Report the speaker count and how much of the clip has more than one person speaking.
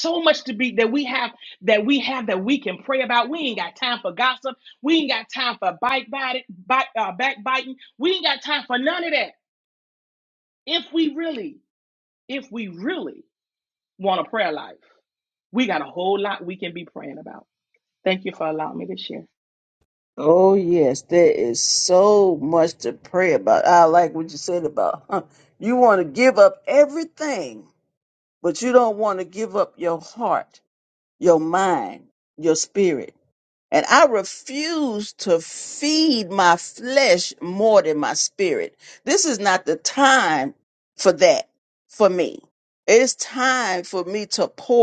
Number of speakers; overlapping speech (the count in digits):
2, no overlap